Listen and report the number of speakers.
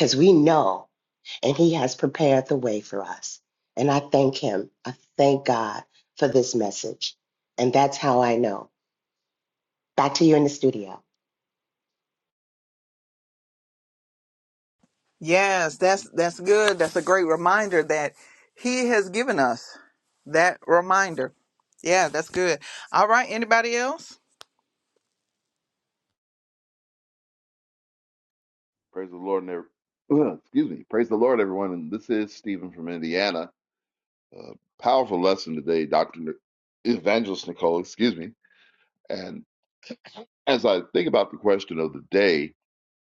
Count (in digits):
3